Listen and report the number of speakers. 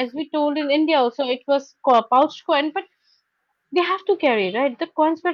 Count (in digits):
1